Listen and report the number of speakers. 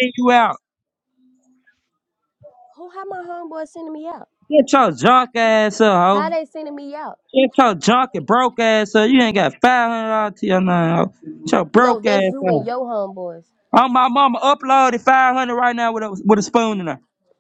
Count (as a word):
two